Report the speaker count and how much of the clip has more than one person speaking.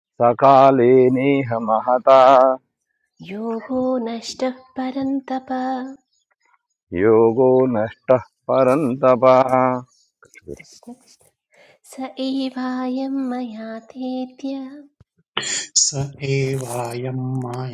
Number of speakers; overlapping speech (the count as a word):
three, no overlap